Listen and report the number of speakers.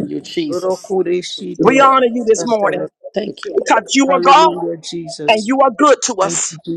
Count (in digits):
3